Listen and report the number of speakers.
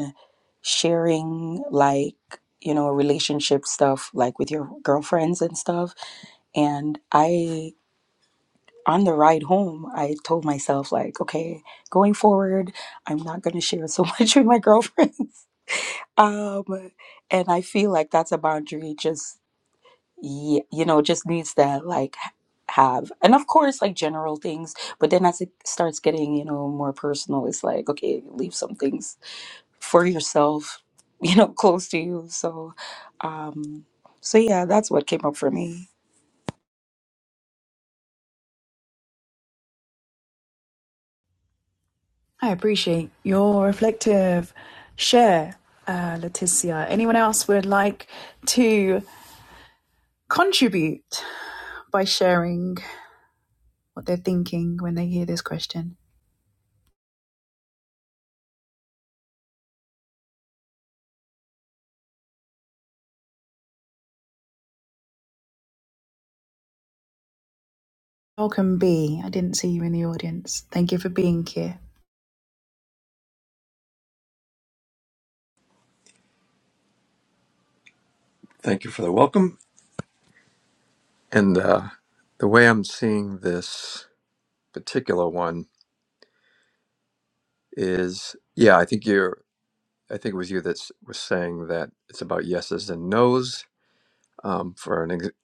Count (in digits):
3